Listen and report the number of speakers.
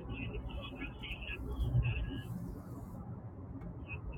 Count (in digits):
0